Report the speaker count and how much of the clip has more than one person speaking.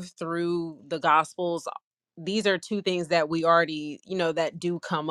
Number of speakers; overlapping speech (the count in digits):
1, no overlap